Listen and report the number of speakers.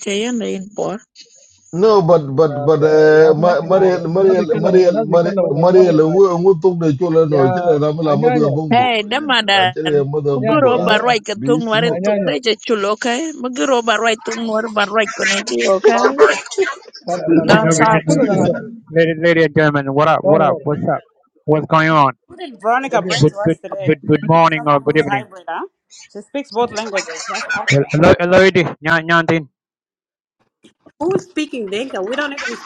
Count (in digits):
6